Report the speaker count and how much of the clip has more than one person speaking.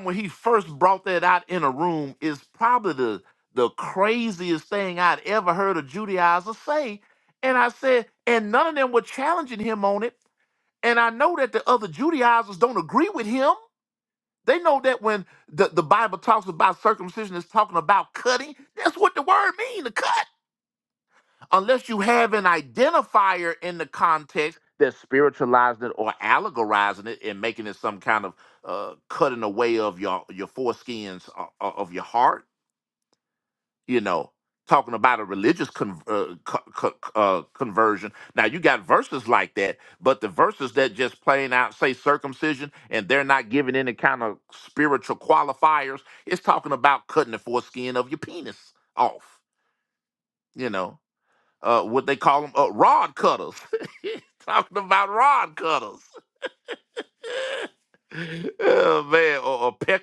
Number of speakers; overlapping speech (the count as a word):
one, no overlap